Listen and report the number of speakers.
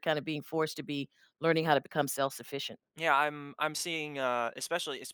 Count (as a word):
two